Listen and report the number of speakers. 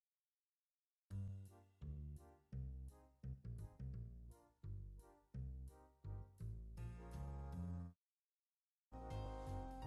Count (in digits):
0